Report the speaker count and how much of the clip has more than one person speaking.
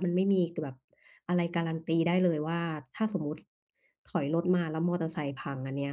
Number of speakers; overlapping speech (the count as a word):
one, no overlap